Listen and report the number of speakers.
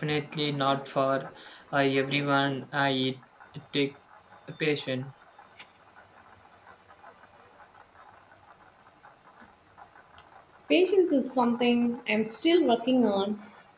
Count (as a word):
two